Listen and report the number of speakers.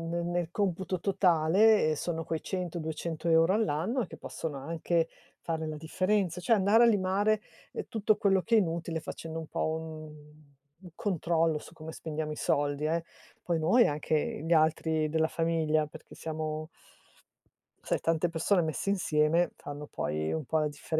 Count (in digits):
1